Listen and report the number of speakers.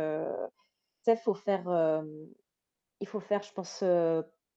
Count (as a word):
one